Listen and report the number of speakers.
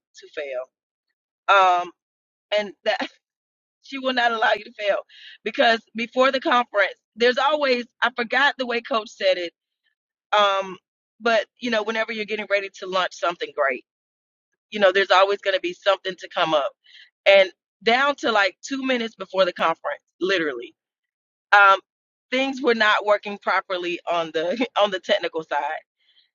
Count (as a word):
one